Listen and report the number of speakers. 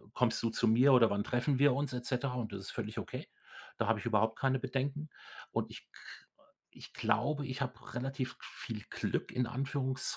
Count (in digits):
1